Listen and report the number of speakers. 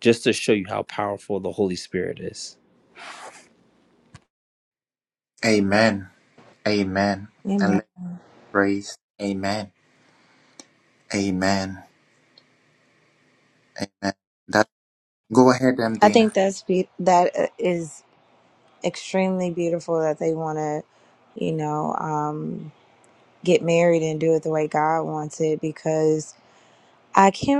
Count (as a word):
three